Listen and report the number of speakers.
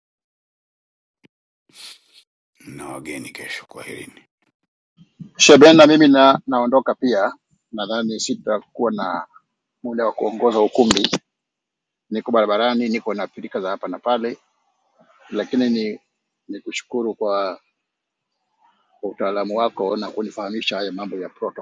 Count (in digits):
2